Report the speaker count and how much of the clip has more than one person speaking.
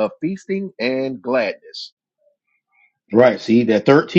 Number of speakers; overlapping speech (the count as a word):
two, no overlap